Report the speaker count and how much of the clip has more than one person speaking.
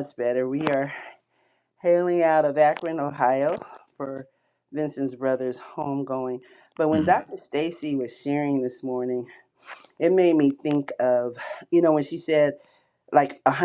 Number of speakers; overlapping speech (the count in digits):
1, no overlap